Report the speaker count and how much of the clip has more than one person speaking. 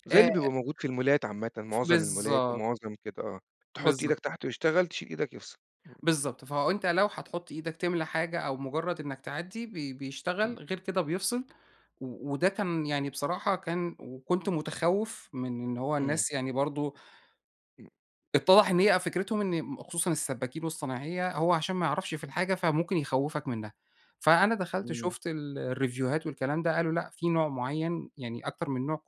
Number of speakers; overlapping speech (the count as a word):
two, about 8%